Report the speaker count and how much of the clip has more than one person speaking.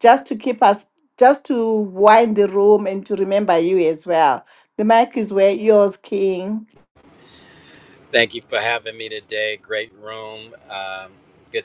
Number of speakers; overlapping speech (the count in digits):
2, no overlap